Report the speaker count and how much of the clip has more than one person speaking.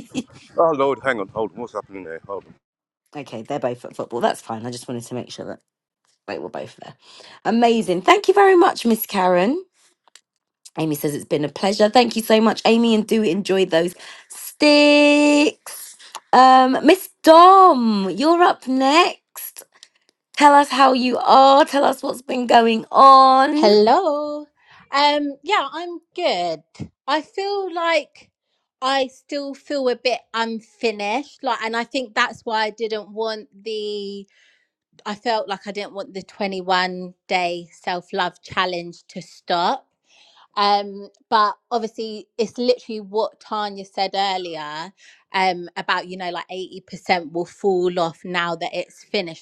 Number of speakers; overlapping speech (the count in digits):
3, under 1%